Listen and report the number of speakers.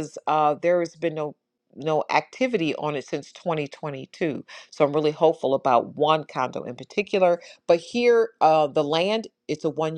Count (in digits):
1